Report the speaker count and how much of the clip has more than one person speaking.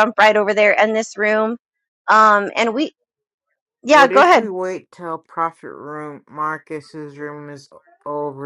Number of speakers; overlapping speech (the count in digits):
2, about 6%